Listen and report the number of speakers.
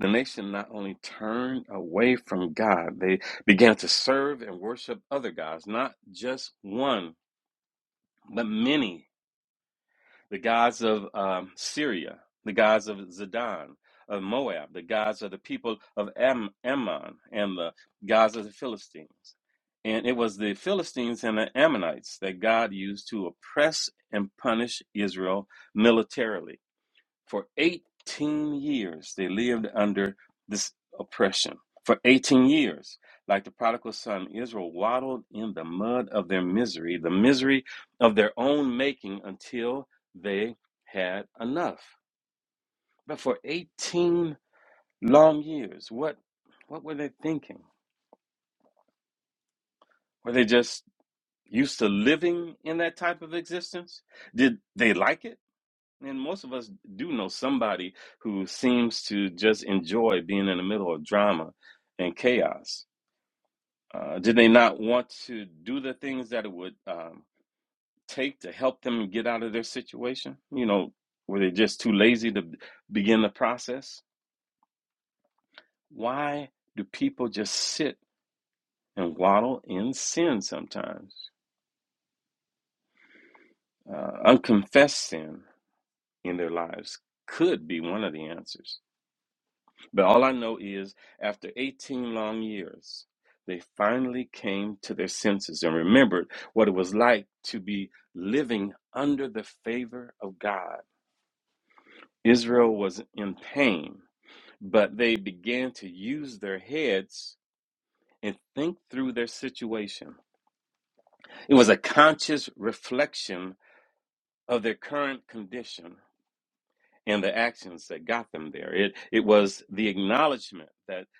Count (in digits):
1